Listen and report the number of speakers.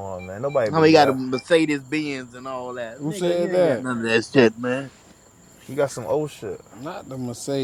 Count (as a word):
three